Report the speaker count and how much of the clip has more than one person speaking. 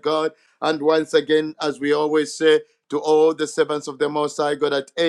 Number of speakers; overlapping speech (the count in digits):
1, no overlap